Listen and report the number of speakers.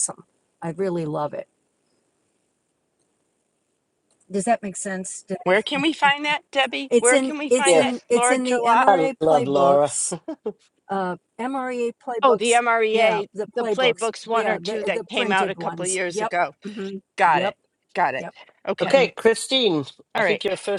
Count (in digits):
3